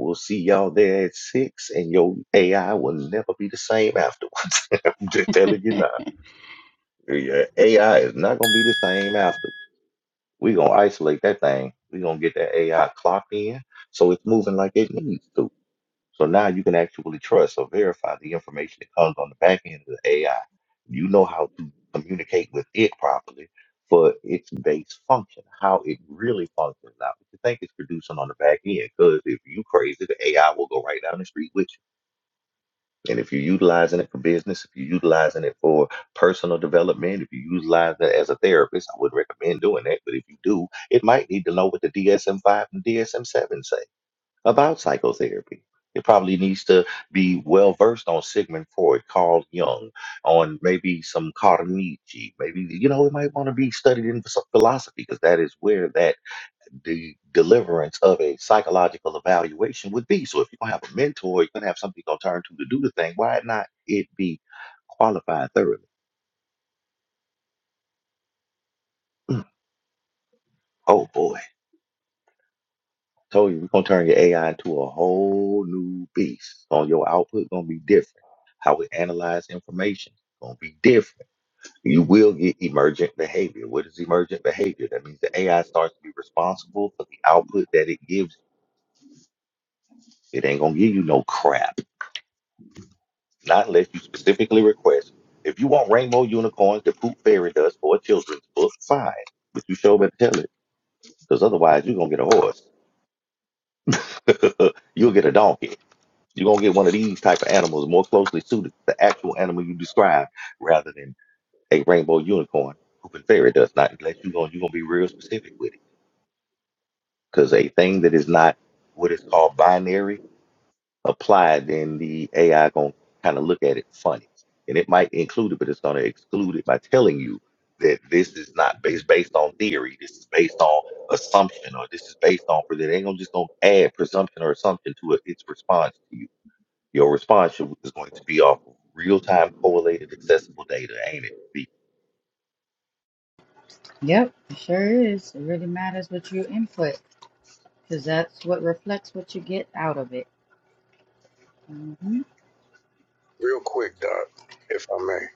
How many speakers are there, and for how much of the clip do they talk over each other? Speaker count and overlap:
3, no overlap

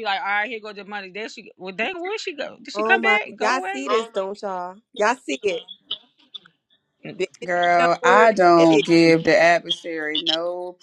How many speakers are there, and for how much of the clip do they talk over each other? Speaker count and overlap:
3, about 24%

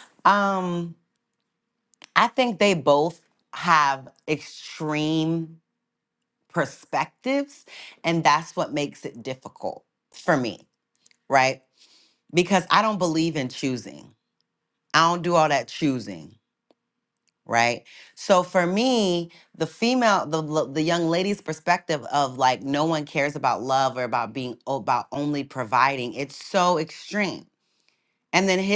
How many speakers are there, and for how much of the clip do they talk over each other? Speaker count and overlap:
1, no overlap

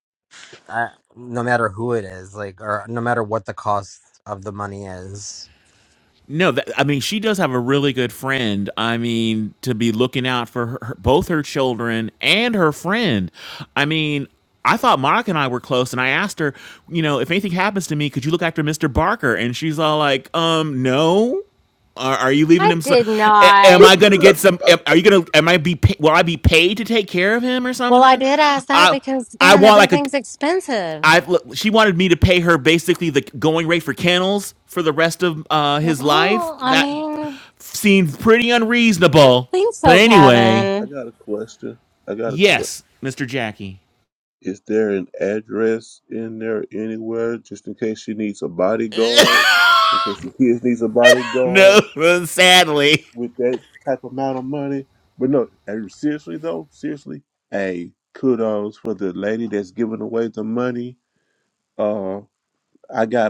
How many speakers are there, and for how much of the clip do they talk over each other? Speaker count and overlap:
4, about 8%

